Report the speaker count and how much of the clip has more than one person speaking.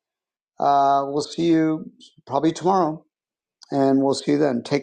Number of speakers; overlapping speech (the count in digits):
1, no overlap